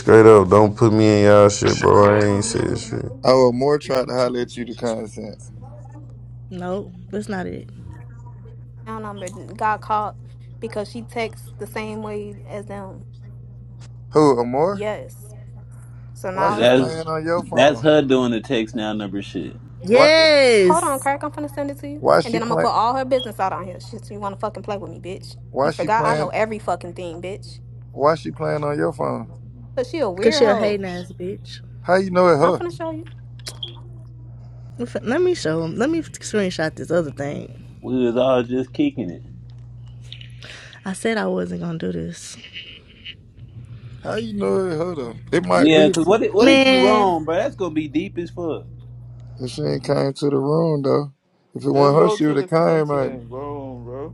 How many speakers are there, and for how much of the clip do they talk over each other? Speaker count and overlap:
6, about 11%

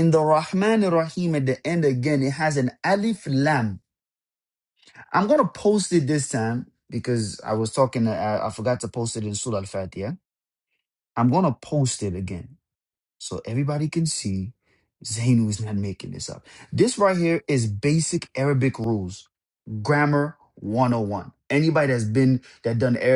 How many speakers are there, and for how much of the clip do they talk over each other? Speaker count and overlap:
1, no overlap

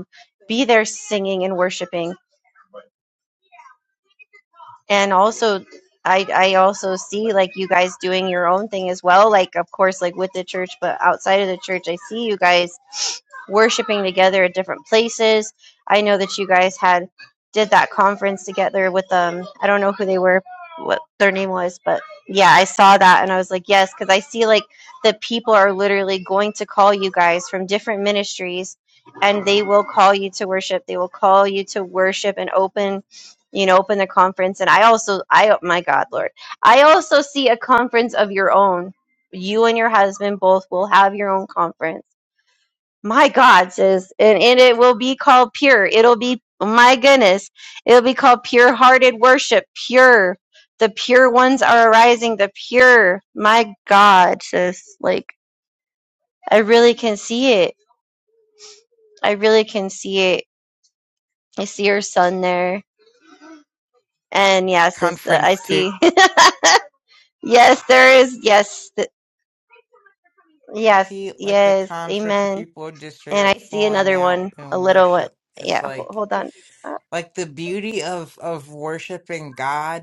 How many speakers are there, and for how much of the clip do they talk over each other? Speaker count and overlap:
2, about 6%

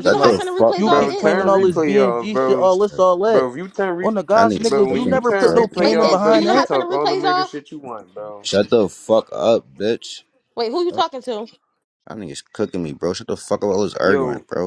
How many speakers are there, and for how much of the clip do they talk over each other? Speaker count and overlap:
4, about 47%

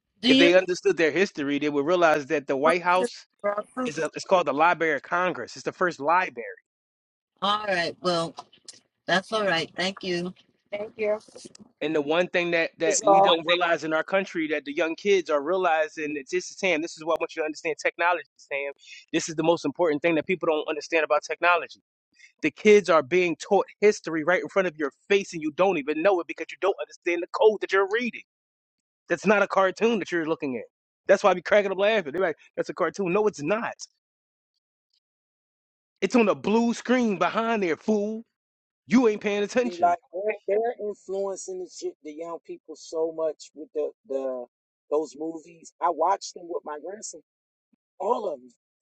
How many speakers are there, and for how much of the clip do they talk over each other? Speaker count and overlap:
3, about 2%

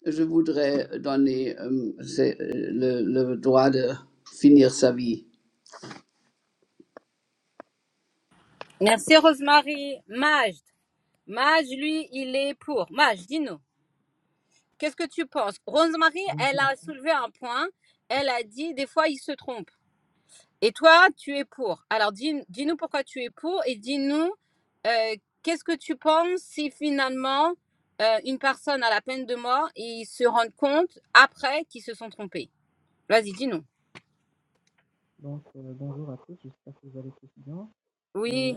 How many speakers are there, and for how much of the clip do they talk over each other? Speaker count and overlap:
3, about 2%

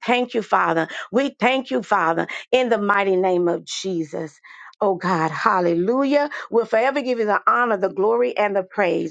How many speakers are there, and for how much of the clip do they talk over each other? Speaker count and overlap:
1, no overlap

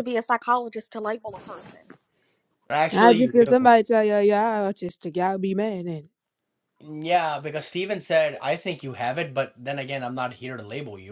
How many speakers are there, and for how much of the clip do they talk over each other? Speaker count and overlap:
3, about 6%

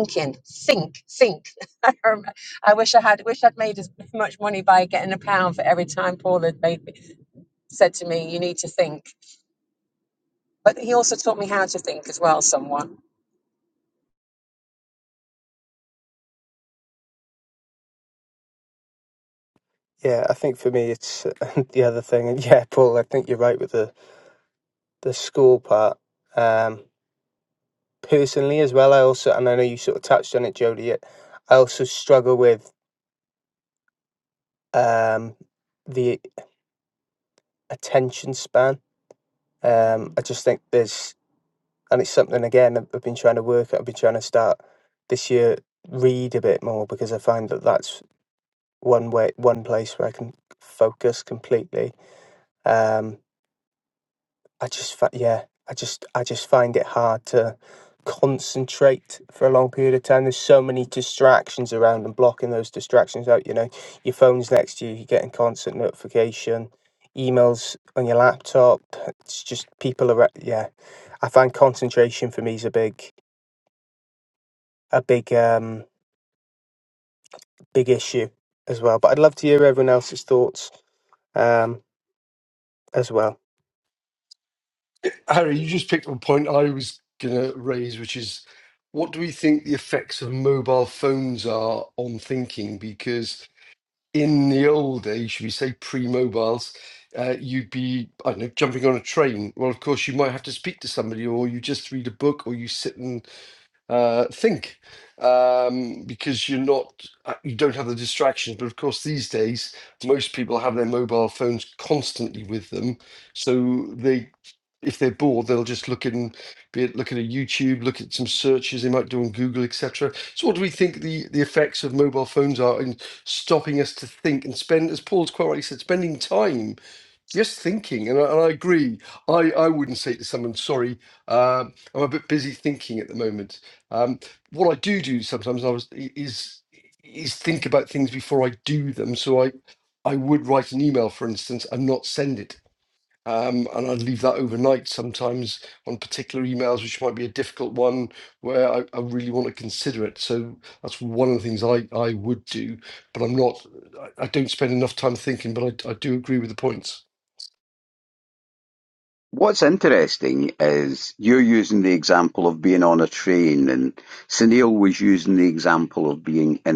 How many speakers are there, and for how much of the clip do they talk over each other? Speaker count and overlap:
4, no overlap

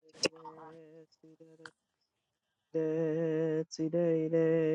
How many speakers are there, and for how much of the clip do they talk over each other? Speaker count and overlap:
1, no overlap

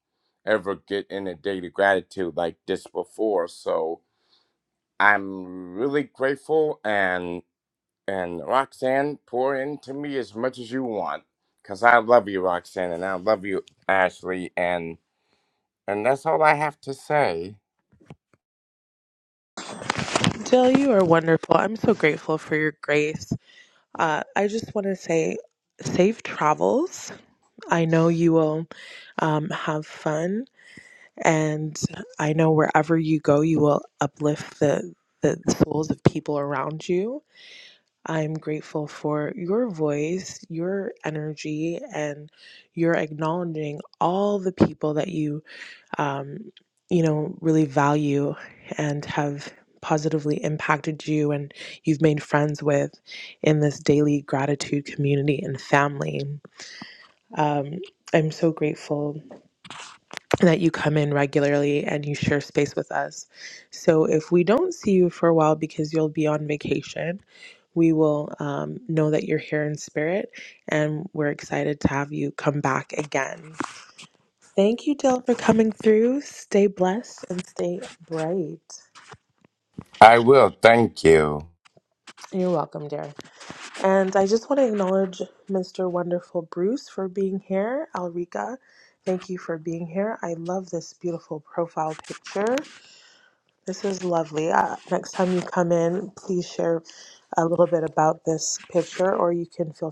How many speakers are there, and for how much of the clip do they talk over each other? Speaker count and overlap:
2, no overlap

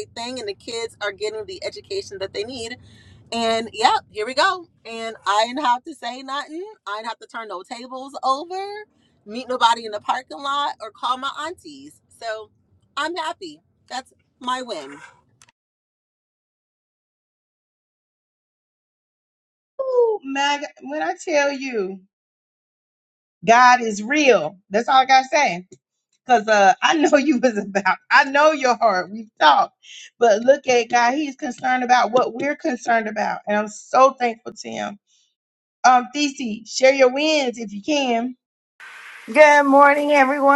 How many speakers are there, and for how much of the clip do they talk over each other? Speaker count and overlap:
3, no overlap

